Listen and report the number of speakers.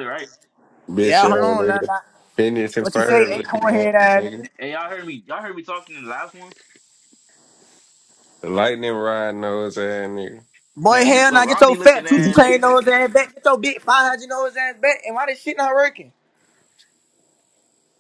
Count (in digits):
3